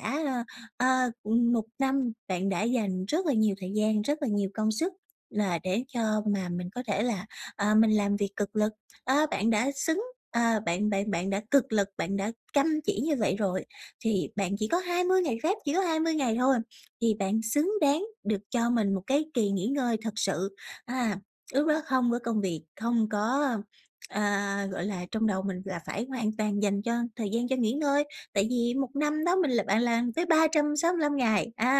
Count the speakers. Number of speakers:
one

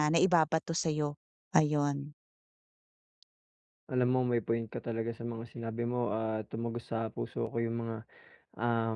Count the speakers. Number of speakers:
two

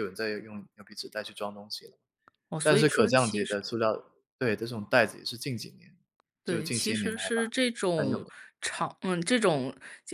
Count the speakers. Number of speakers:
two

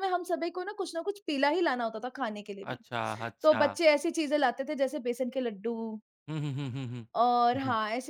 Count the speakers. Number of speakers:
two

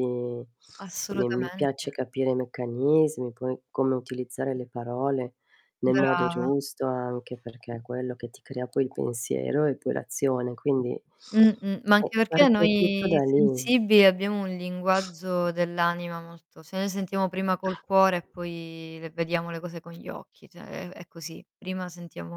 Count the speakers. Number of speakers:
two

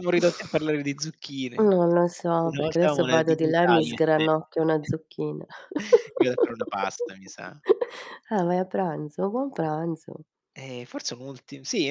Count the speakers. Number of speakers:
two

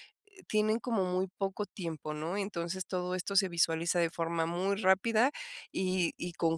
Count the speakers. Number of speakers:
one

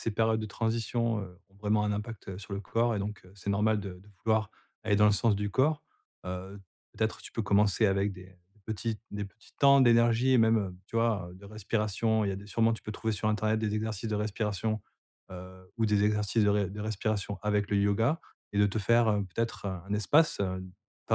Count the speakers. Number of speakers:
one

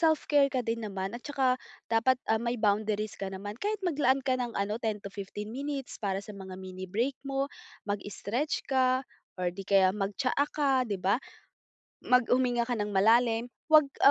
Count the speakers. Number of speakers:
one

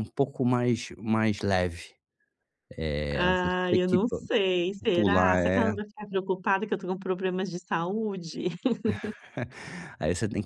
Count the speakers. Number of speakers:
two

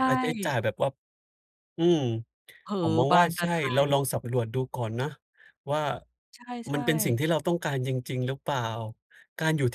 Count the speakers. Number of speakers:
two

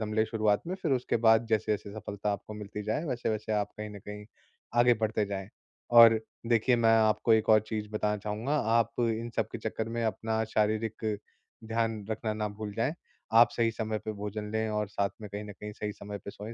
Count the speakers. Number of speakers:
one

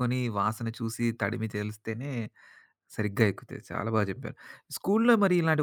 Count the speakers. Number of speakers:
one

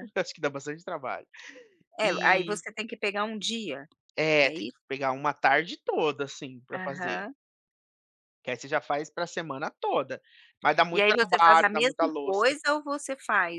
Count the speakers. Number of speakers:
two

